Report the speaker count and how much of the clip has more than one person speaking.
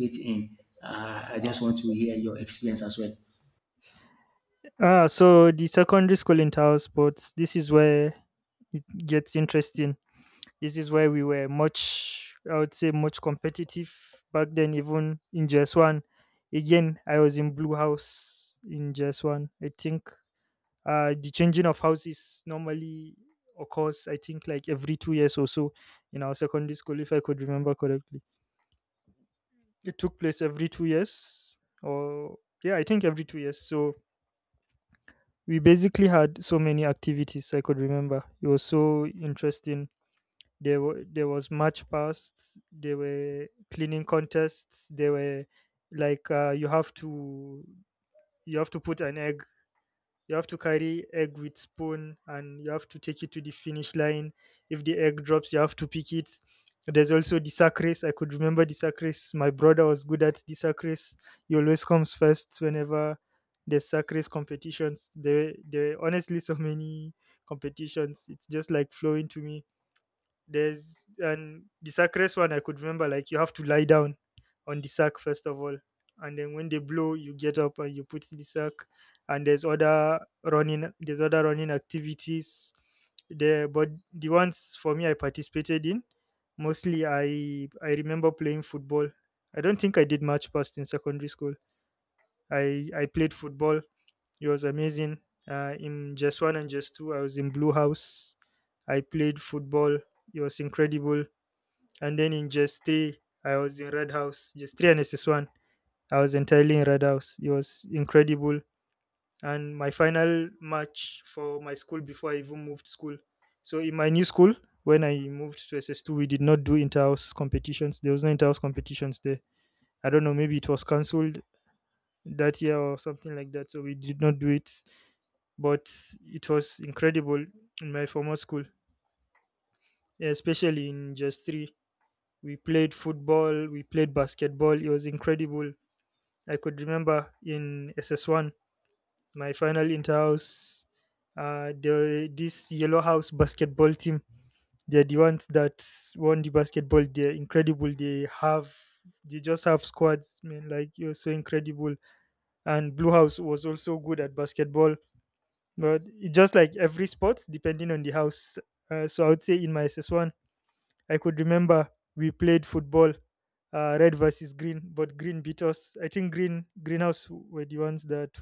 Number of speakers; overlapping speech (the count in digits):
2, no overlap